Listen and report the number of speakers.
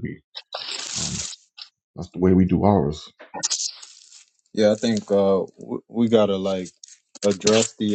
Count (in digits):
2